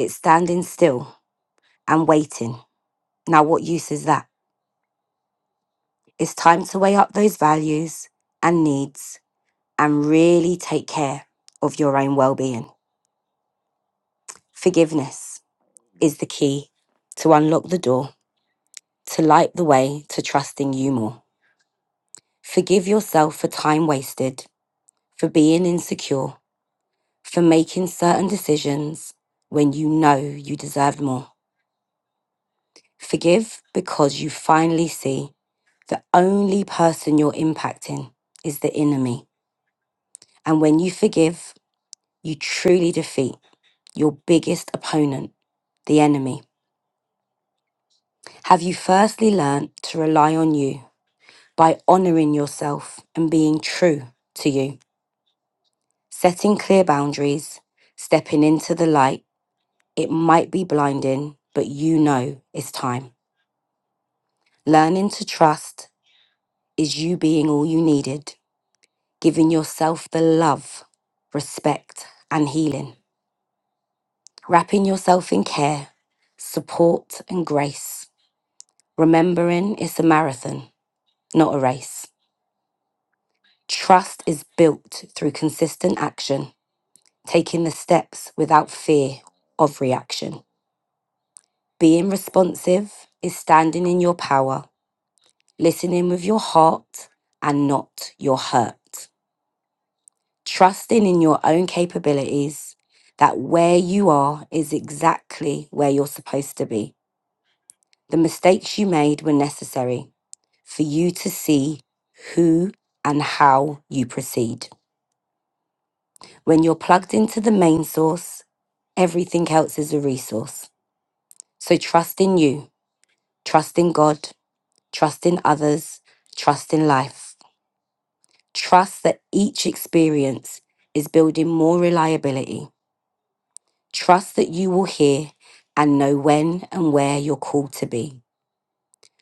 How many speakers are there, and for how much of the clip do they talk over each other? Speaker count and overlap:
1, no overlap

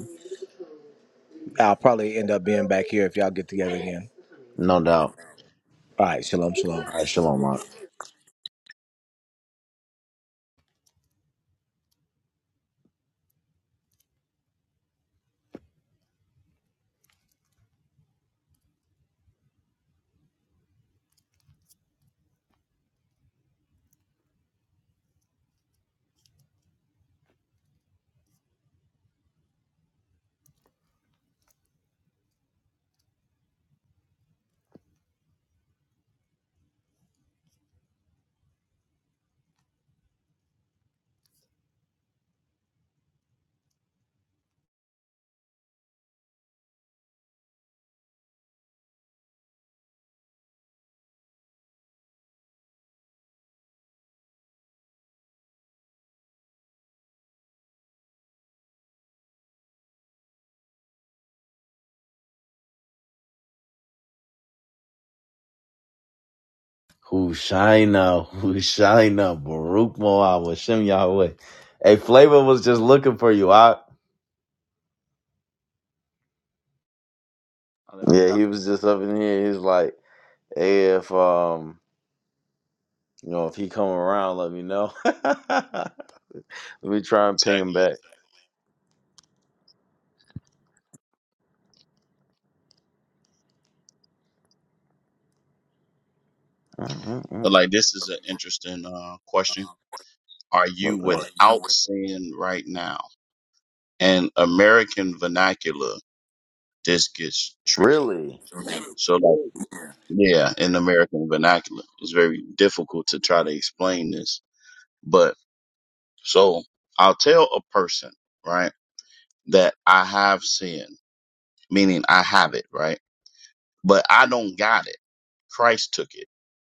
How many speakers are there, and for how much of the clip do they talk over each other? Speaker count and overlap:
3, about 1%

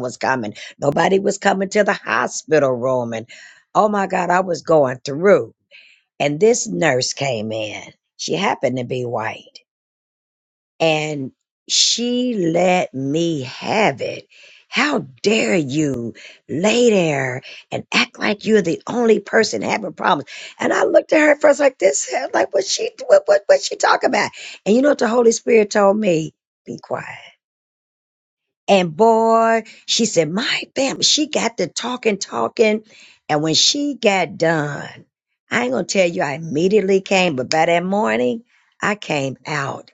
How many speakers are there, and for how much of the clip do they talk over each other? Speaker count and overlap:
1, no overlap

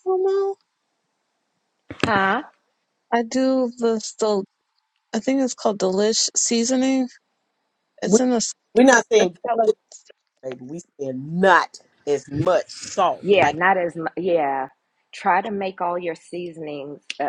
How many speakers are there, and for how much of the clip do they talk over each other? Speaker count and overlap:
3, about 6%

